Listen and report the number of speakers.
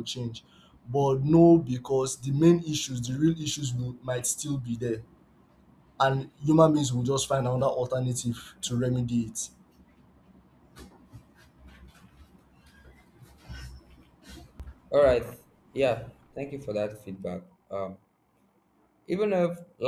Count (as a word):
two